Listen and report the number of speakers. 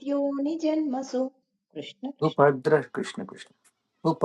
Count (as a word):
two